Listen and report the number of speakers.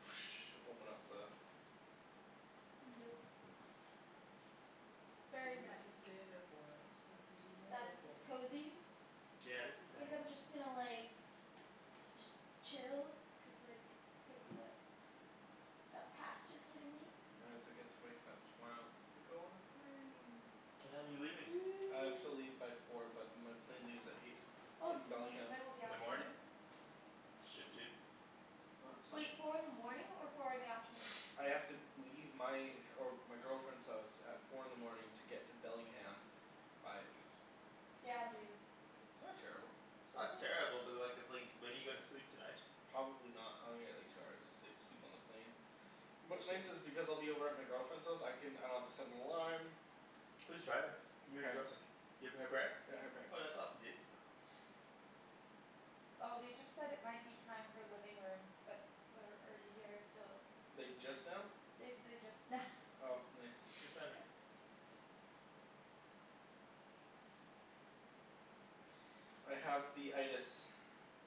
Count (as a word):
three